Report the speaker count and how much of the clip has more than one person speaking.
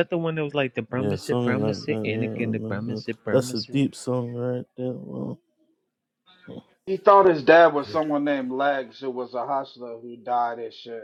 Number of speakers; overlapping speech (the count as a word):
three, about 23%